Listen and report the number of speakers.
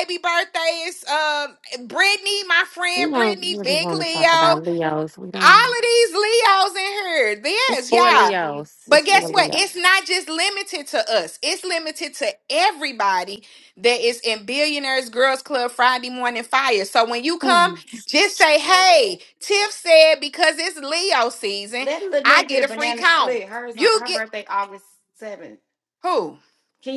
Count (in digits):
3